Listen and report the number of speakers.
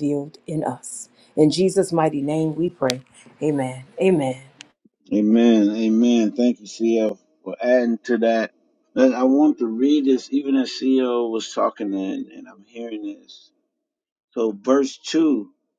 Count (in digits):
2